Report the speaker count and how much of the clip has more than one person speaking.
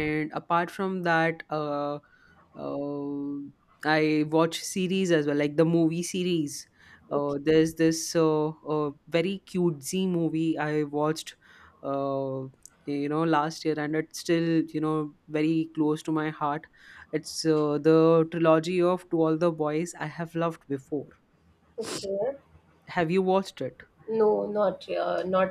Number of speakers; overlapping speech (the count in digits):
2, under 1%